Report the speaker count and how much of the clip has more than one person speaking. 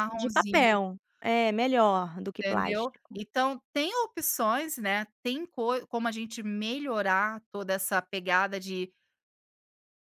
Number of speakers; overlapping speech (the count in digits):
2, about 13%